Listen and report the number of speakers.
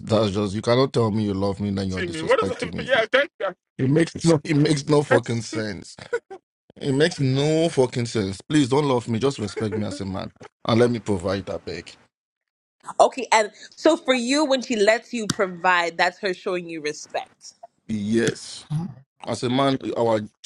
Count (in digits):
3